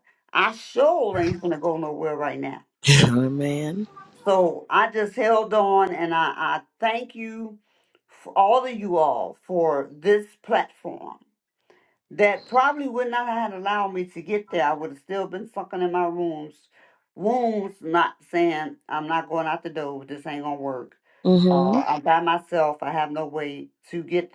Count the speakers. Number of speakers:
2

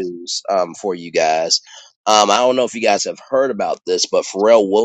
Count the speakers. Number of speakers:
1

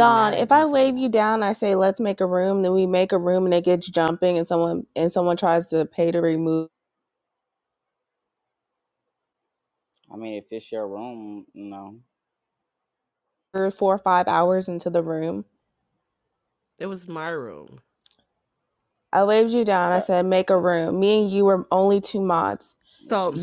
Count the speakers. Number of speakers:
3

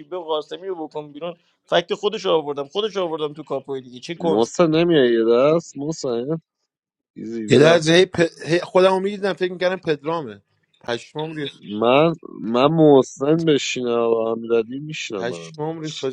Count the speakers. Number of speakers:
3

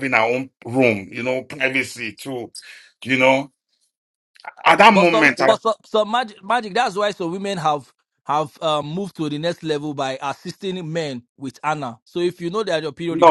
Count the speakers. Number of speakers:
2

